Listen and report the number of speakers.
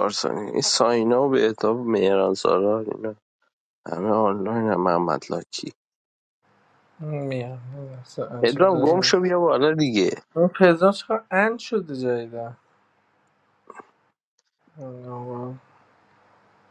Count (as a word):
two